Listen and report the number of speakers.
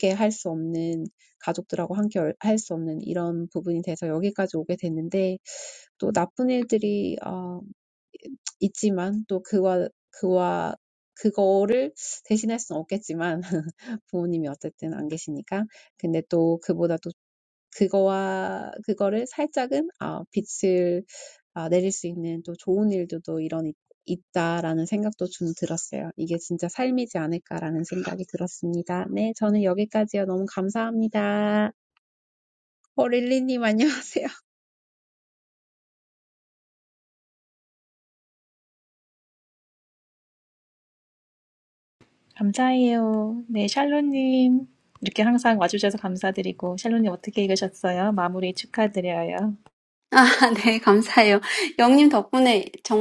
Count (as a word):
three